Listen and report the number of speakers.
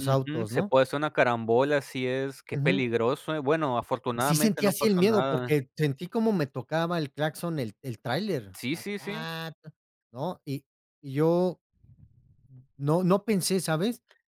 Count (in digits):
2